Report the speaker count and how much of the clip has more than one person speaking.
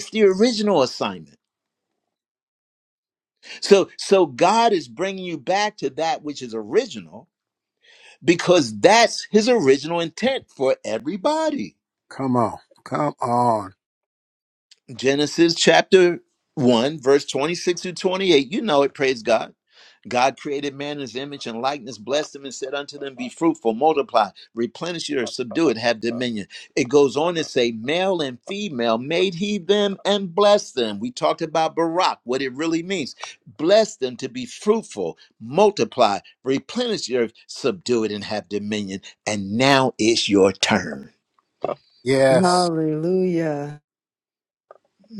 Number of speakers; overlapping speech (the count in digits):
3, about 1%